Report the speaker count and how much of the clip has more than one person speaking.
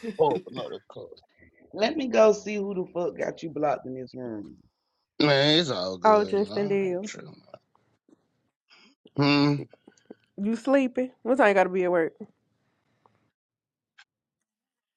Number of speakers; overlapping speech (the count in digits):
3, about 7%